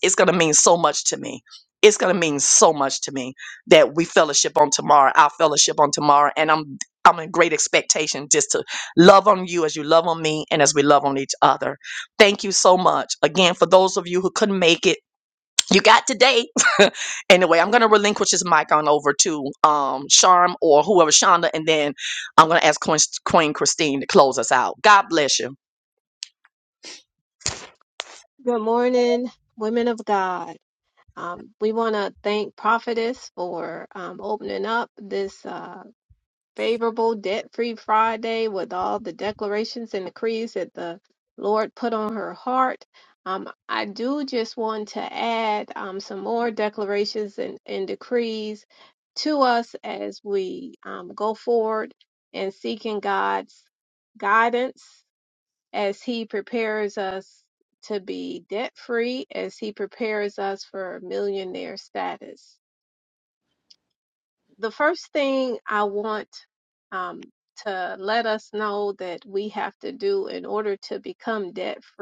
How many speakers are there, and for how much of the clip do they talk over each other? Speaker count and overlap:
2, no overlap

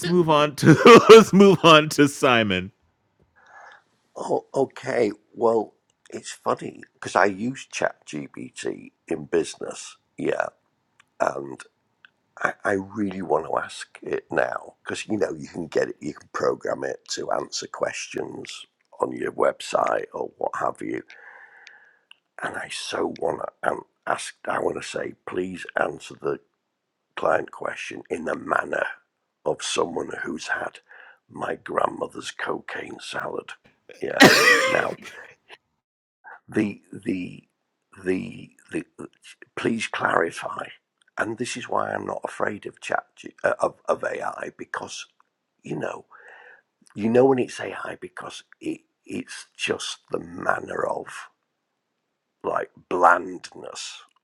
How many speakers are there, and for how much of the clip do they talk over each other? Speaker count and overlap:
2, no overlap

